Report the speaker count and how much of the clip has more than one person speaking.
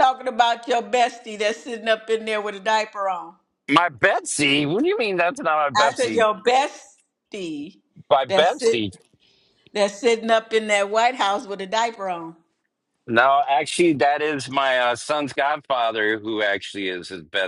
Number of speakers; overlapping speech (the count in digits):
2, about 6%